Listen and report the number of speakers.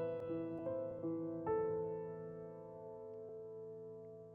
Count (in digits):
0